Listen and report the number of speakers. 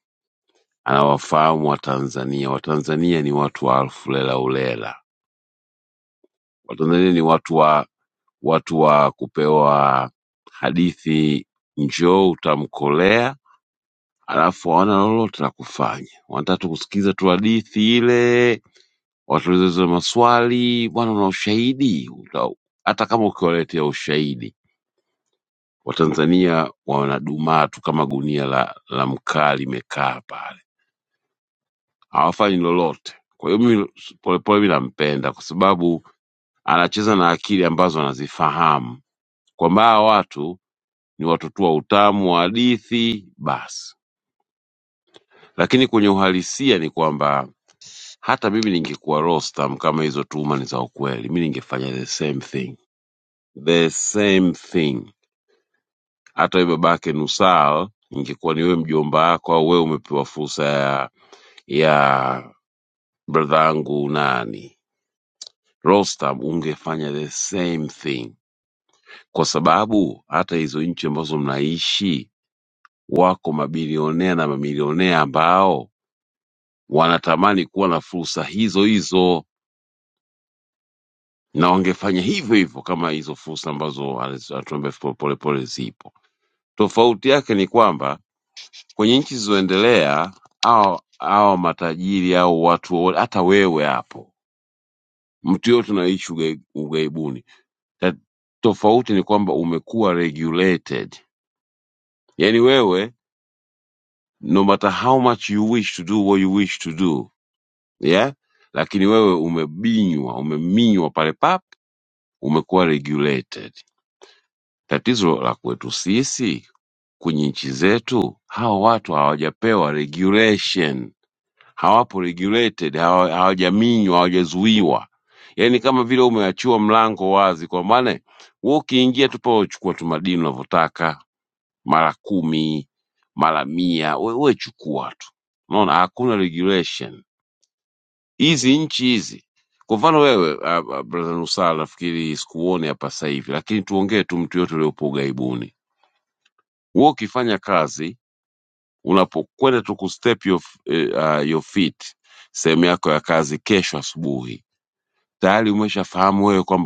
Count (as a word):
one